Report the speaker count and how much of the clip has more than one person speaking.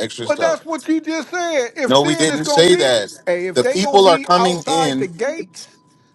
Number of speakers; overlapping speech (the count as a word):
two, about 46%